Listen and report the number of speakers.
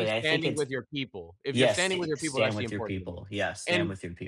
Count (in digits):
2